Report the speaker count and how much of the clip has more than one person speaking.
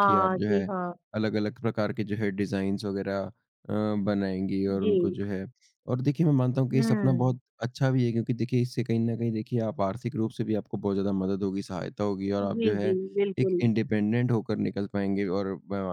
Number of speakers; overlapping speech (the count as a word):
two, about 16%